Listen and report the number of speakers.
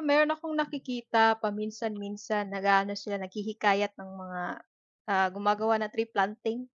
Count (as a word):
one